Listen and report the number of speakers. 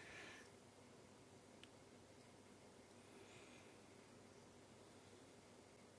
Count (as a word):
zero